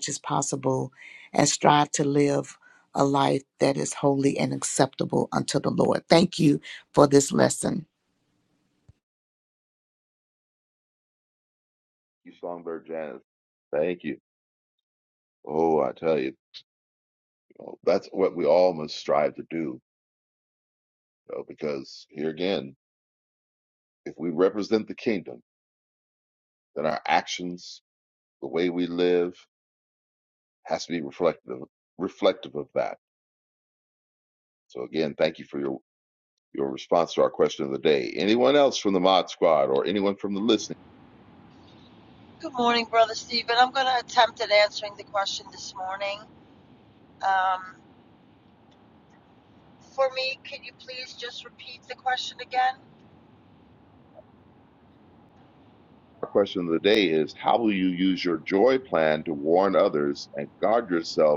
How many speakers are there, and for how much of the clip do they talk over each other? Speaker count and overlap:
three, no overlap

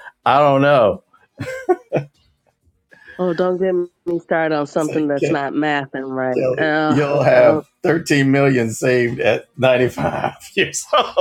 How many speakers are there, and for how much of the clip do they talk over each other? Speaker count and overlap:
two, about 14%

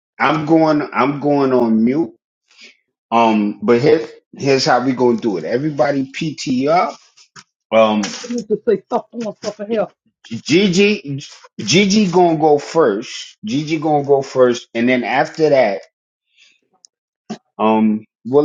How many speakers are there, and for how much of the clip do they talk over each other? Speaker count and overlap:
two, under 1%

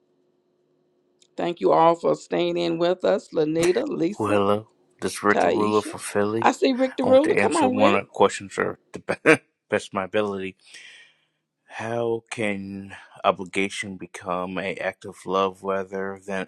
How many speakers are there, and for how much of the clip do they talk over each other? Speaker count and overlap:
two, about 11%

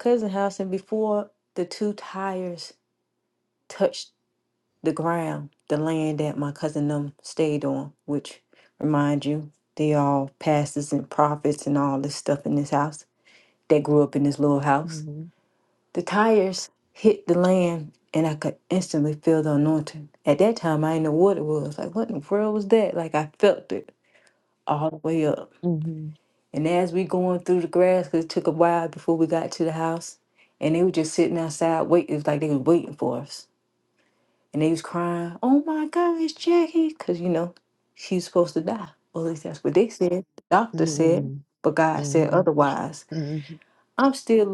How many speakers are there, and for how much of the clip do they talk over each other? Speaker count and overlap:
two, about 3%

